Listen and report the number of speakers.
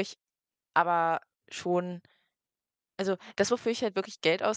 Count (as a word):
one